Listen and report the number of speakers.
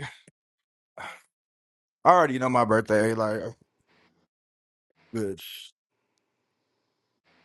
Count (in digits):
1